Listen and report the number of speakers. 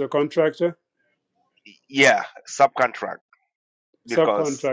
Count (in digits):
2